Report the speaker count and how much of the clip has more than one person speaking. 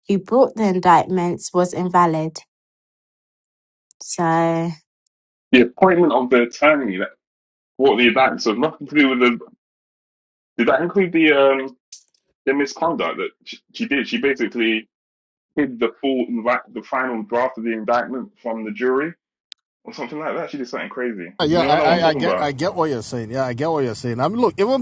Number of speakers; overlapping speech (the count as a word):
three, about 4%